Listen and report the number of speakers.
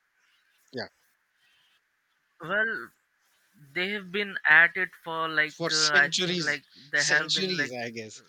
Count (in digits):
2